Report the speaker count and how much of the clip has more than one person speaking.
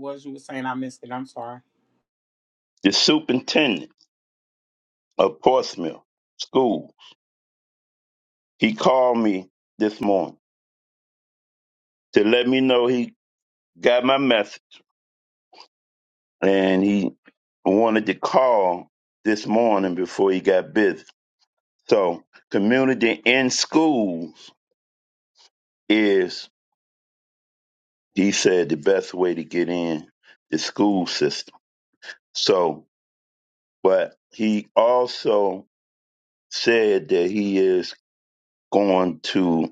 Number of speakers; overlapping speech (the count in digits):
2, no overlap